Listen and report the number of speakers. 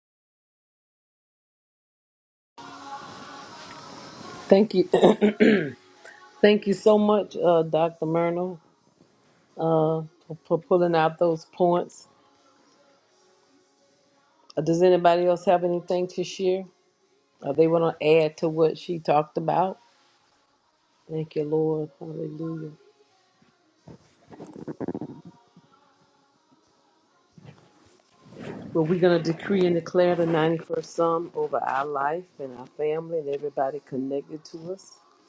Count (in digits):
1